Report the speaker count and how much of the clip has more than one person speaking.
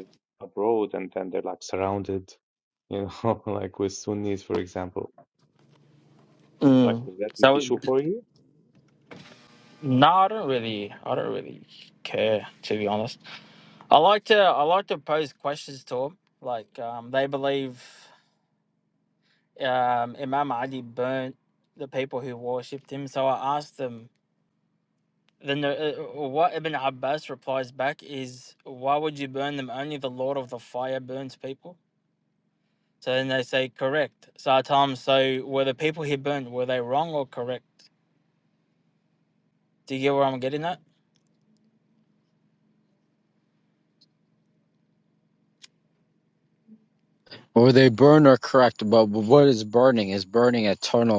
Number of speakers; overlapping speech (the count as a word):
three, about 2%